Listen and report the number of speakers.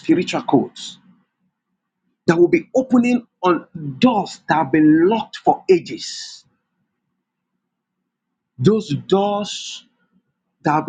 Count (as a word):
one